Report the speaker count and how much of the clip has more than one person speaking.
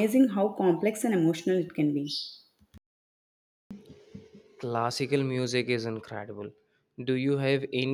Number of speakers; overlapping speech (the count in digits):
2, no overlap